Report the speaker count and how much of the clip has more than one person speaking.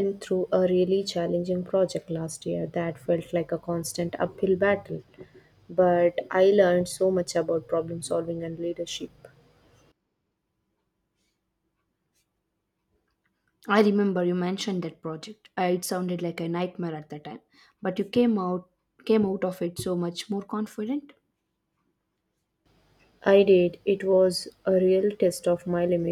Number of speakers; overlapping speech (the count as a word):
two, no overlap